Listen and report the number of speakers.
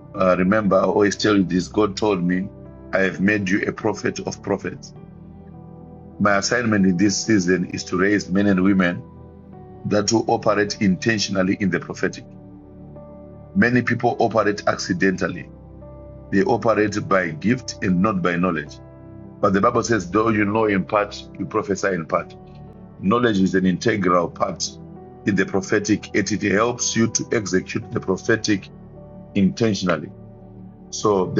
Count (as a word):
one